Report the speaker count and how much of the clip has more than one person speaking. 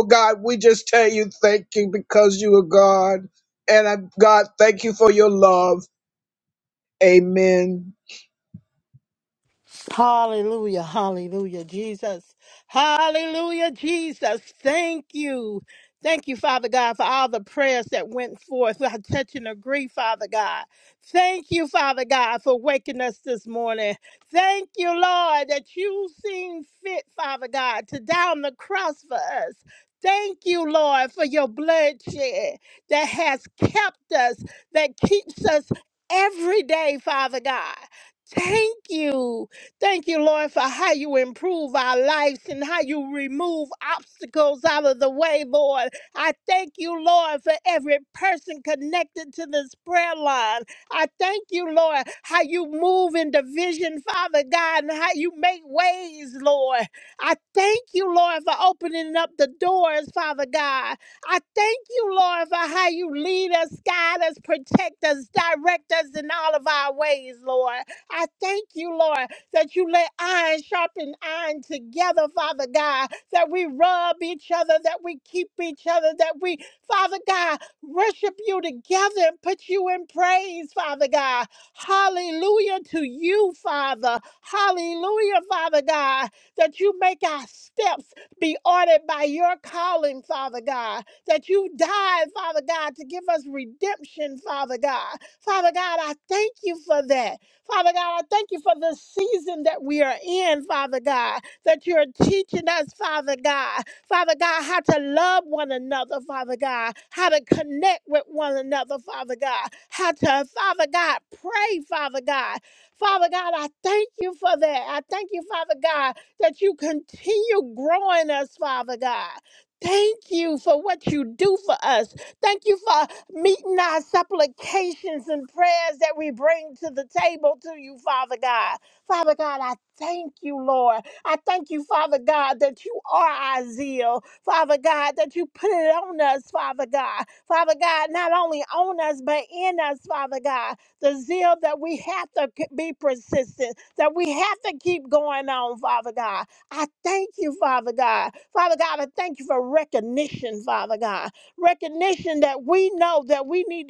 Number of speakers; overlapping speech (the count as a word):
two, no overlap